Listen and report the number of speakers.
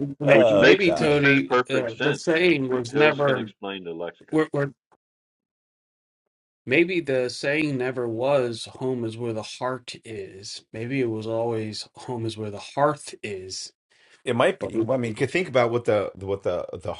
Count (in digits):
3